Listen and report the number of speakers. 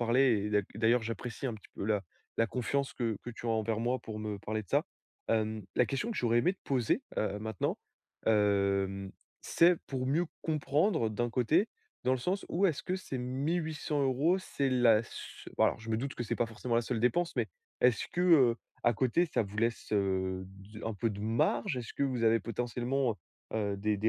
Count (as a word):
one